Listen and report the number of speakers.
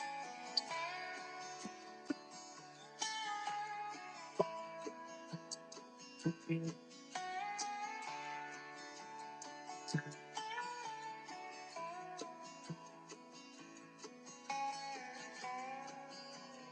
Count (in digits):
0